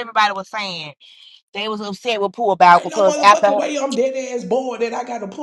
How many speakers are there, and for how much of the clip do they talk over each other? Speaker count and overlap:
two, about 16%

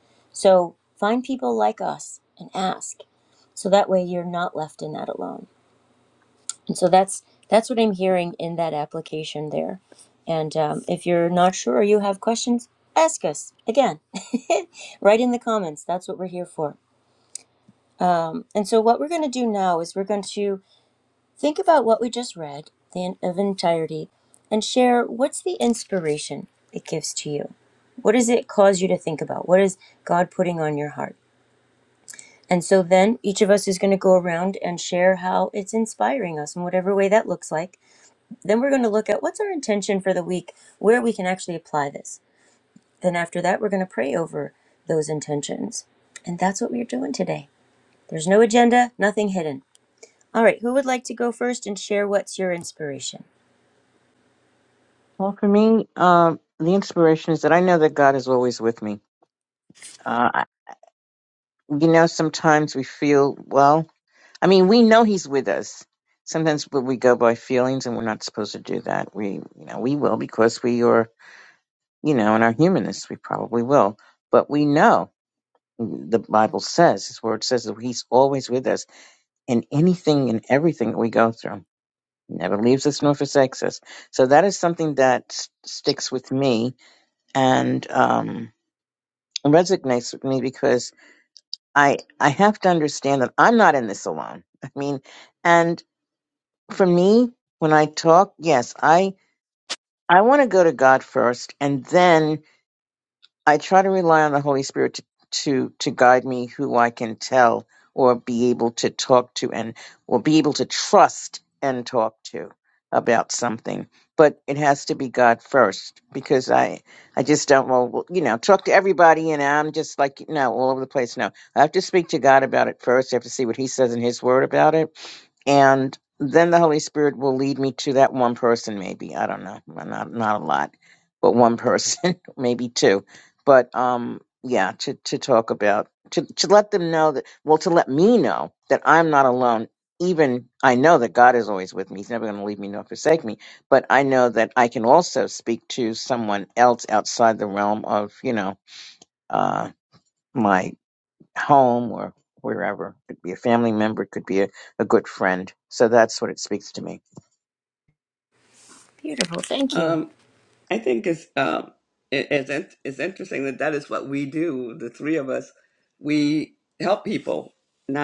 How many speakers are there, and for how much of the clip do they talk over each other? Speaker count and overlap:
three, under 1%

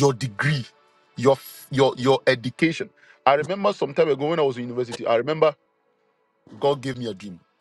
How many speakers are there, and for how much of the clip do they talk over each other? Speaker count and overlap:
one, no overlap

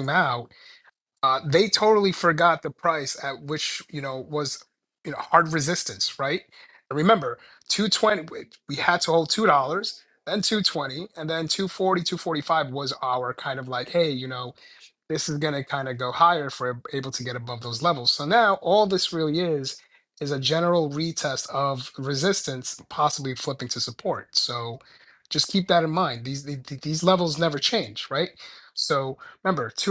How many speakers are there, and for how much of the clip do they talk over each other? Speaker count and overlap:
one, no overlap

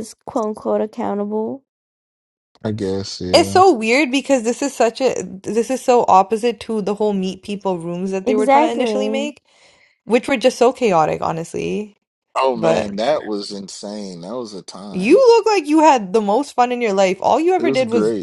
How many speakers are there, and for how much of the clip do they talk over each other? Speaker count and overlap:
three, about 14%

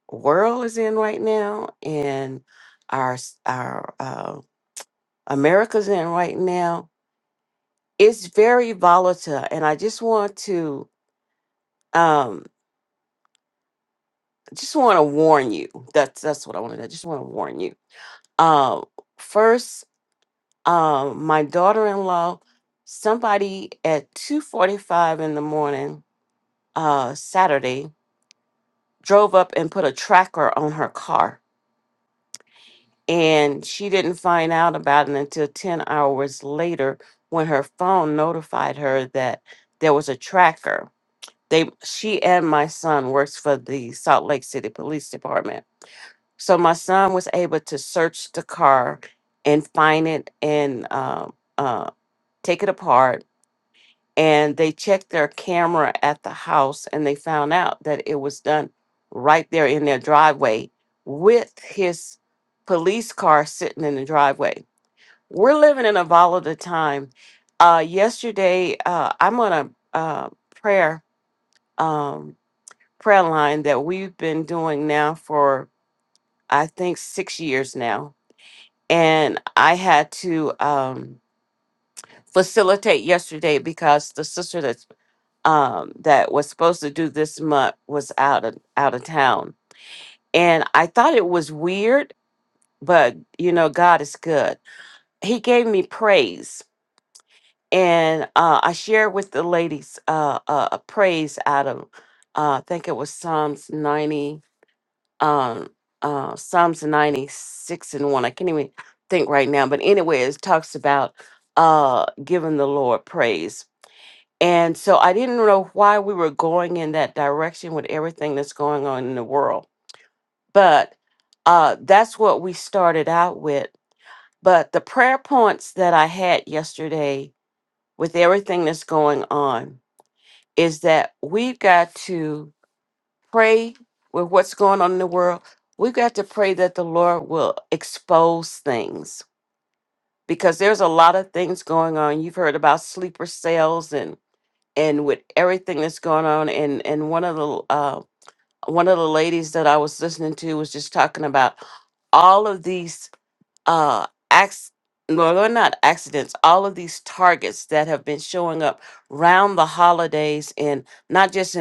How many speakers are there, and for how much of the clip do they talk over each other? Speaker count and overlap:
one, no overlap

